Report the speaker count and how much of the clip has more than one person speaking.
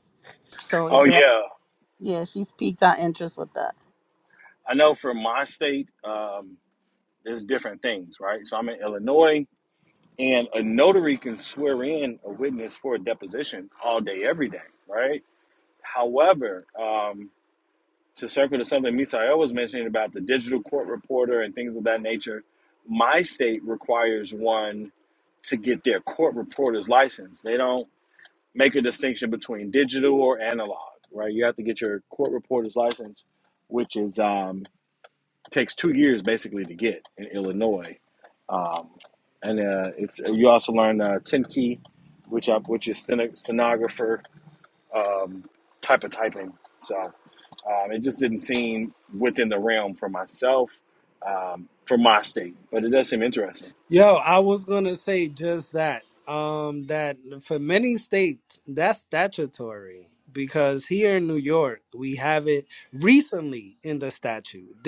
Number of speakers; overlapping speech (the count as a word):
three, about 1%